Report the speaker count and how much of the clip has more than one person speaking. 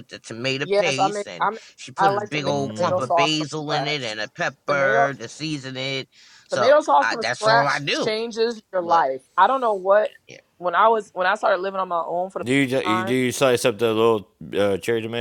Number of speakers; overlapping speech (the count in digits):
3, about 36%